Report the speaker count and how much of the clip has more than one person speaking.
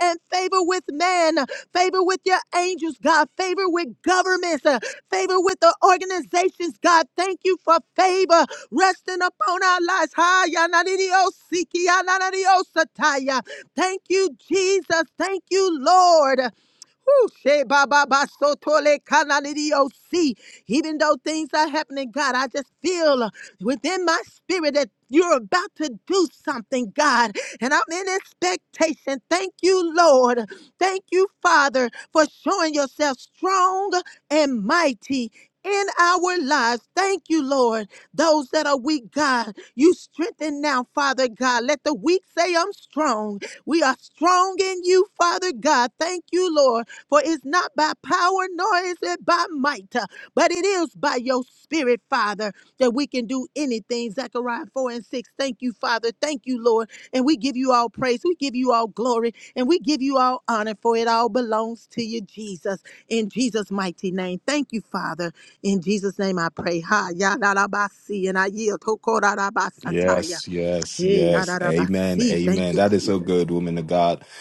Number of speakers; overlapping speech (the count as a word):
two, about 4%